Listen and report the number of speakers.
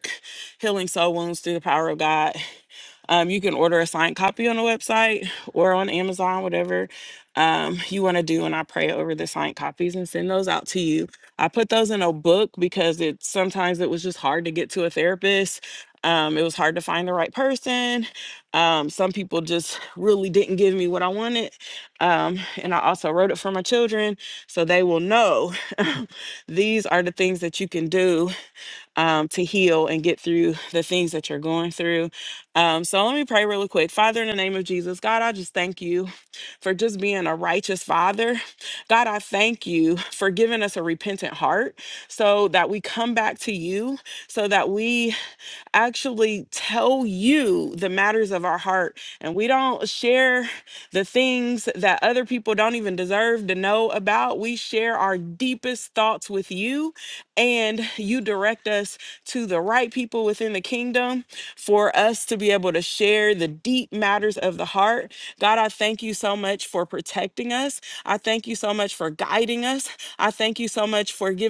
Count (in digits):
1